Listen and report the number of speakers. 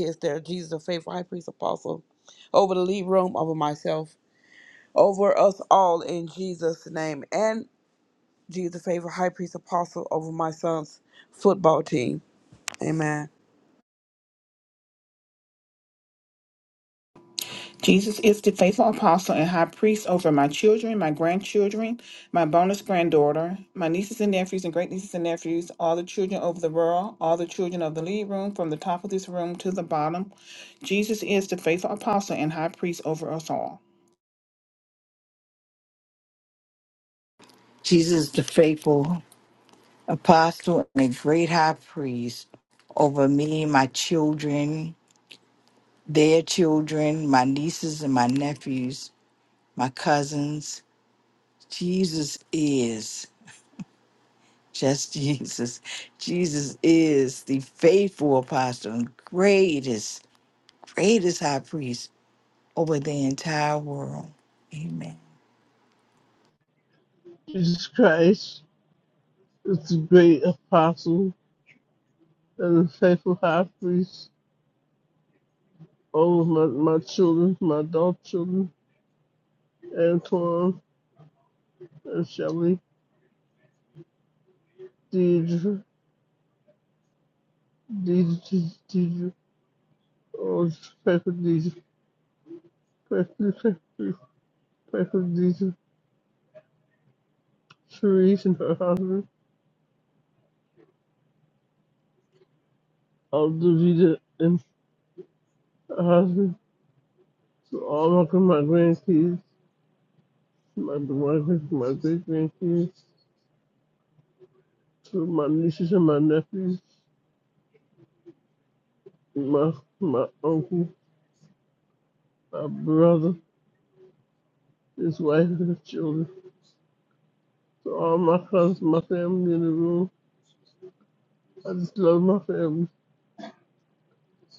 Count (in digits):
4